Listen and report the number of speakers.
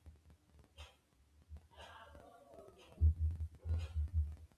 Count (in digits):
0